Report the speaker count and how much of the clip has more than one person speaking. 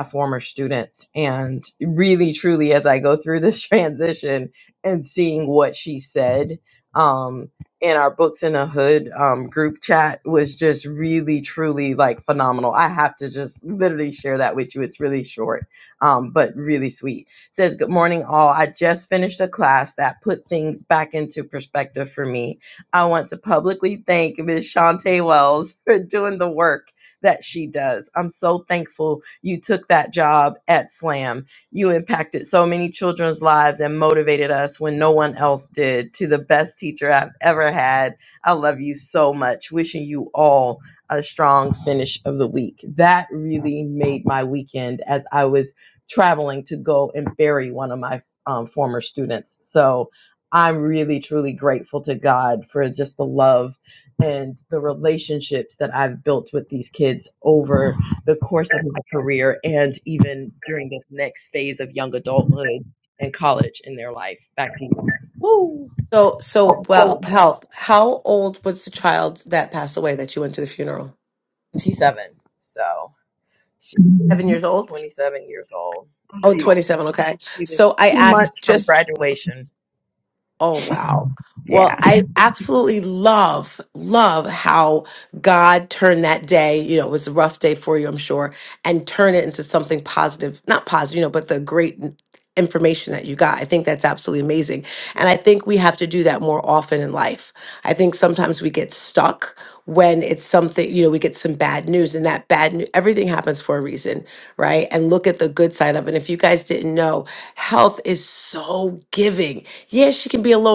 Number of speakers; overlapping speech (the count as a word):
two, about 1%